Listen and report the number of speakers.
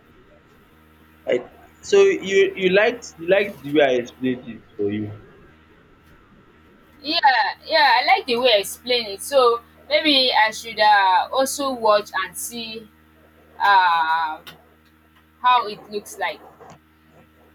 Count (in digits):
2